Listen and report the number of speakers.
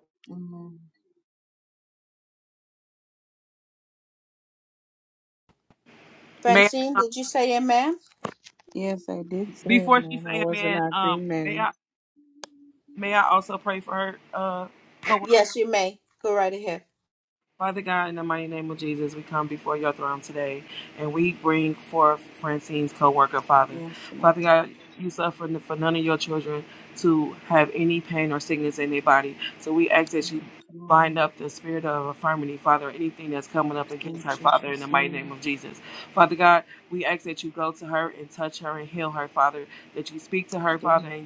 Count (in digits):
3